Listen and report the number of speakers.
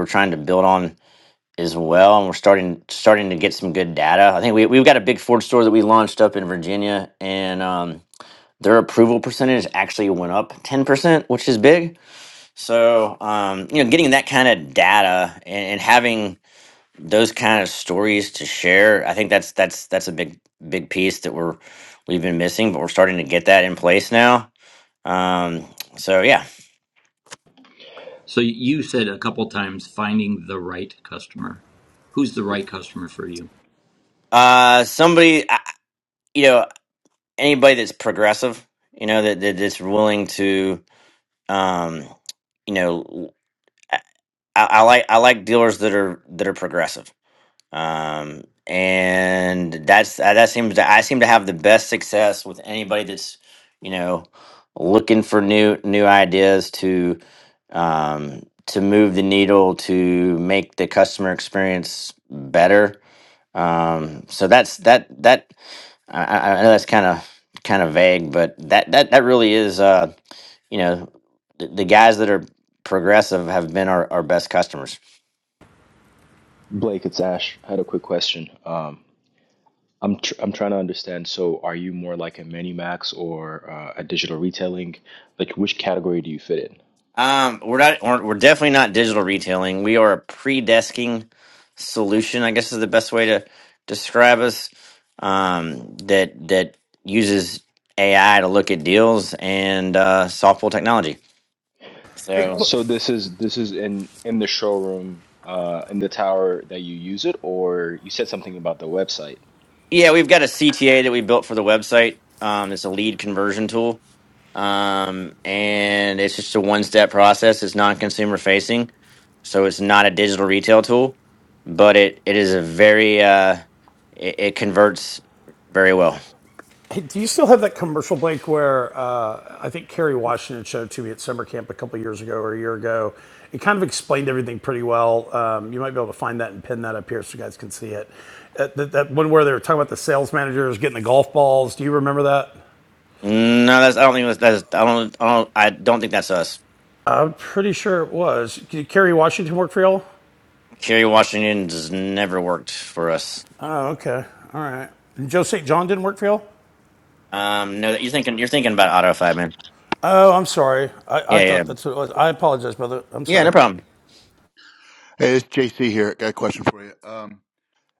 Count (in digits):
5